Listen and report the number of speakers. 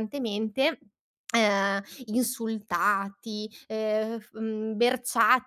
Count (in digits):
1